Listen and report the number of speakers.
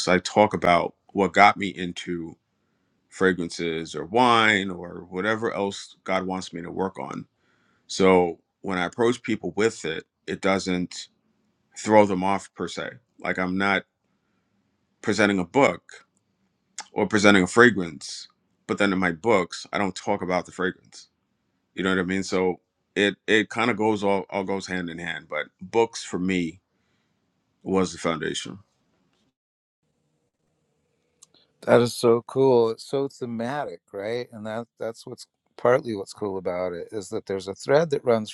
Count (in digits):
2